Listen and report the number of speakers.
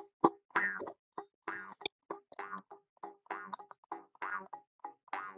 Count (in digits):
0